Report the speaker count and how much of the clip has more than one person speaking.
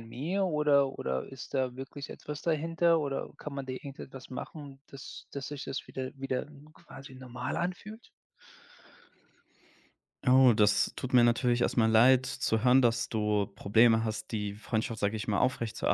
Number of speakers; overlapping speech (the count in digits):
2, no overlap